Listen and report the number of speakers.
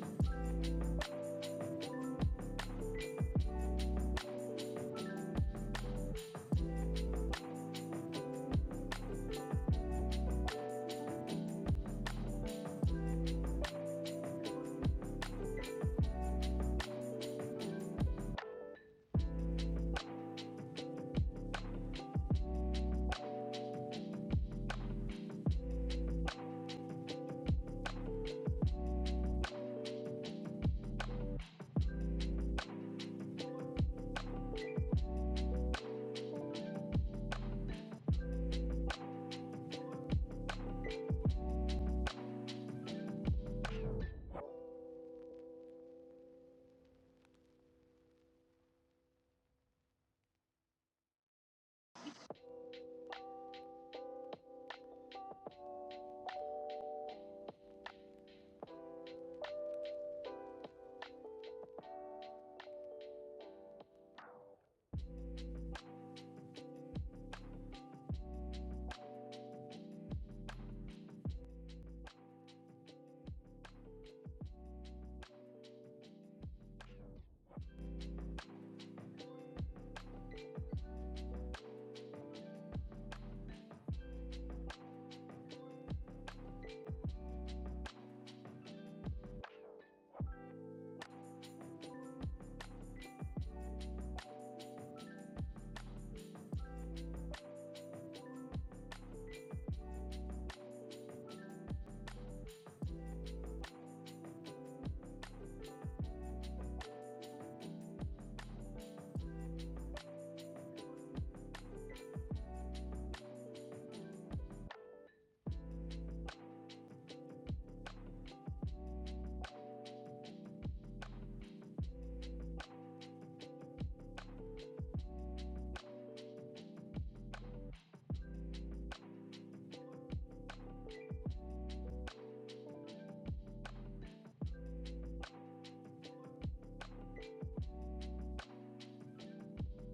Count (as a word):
zero